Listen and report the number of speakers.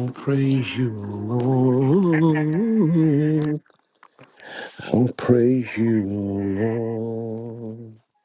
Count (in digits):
1